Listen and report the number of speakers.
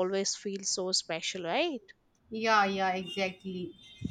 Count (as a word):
two